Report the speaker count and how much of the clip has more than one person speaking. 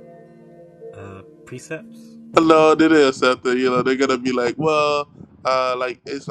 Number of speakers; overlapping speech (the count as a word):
two, no overlap